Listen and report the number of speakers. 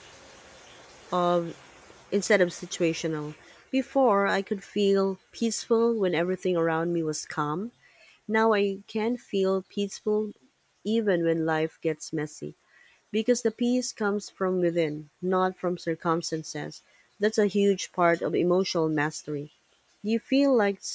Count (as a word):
one